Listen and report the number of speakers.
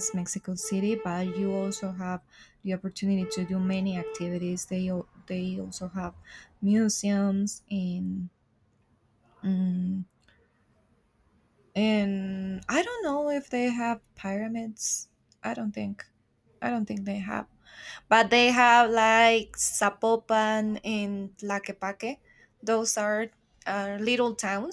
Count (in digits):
1